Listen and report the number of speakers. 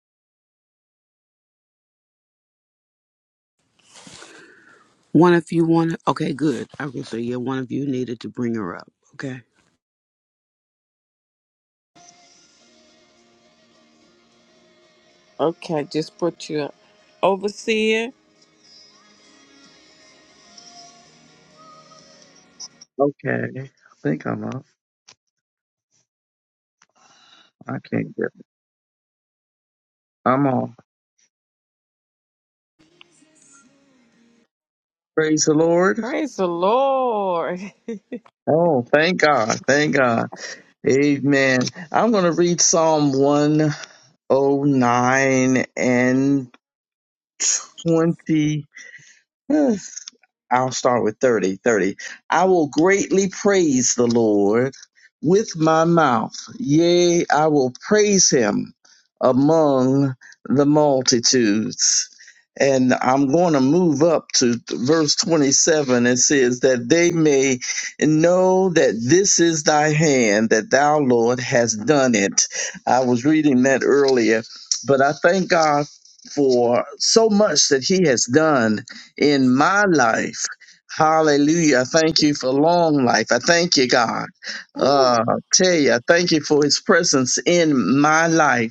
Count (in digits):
3